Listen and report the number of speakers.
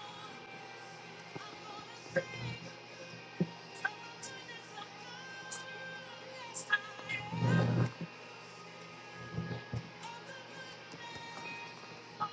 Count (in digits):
0